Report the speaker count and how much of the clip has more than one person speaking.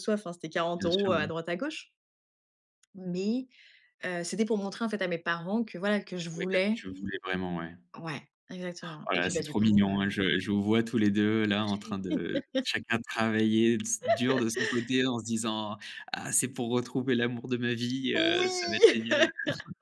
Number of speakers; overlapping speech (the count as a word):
two, about 15%